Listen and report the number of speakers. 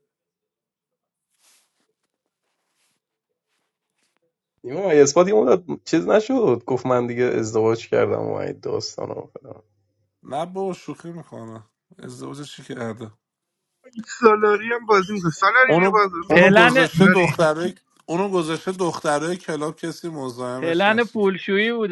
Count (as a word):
four